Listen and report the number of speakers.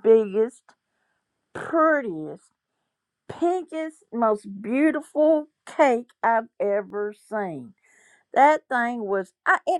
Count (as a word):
one